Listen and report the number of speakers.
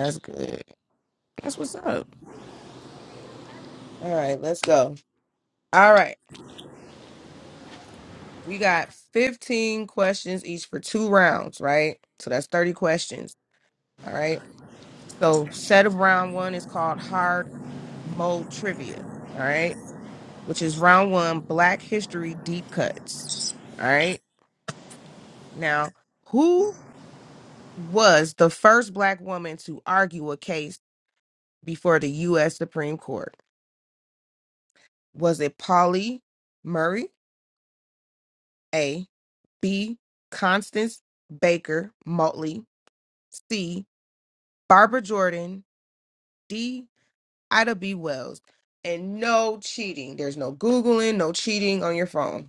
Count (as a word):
one